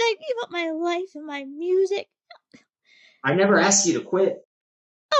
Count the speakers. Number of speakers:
two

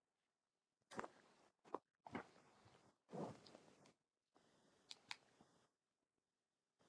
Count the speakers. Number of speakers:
zero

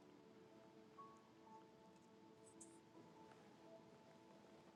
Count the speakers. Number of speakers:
zero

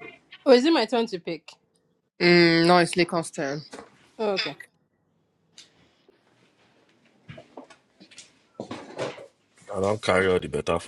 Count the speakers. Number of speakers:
three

